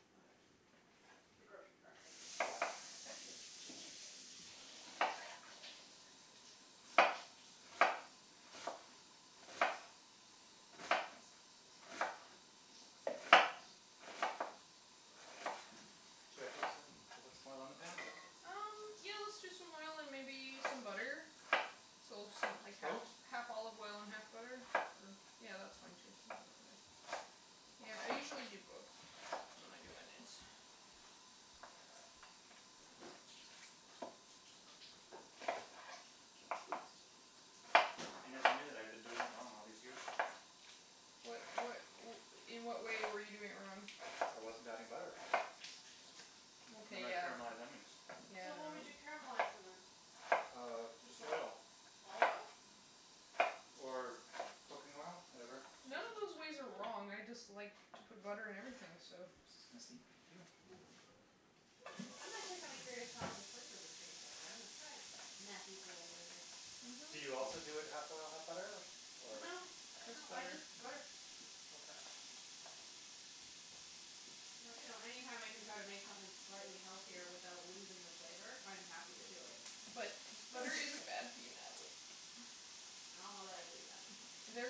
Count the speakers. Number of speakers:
3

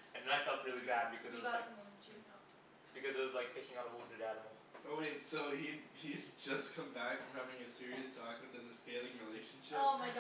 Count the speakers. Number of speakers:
3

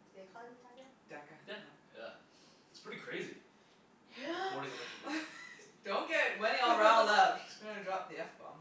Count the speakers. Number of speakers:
3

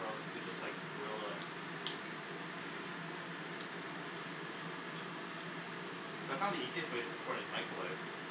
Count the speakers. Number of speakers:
1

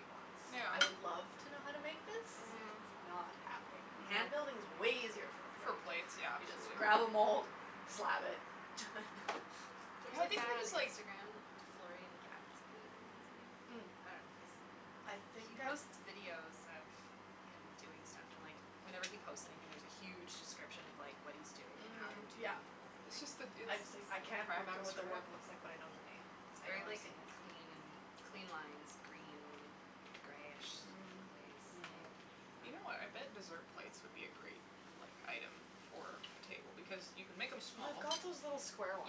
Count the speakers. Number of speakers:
3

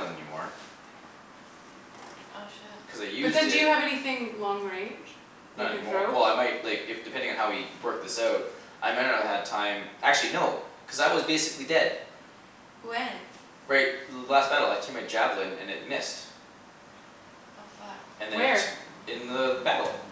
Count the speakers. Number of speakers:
3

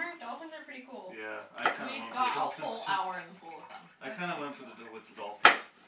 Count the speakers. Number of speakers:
3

